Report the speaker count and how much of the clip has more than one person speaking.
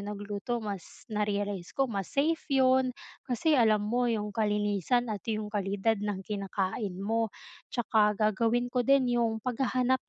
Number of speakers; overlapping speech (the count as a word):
one, no overlap